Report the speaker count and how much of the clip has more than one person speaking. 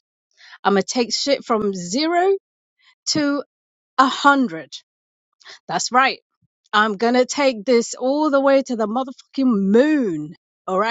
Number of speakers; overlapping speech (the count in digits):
1, no overlap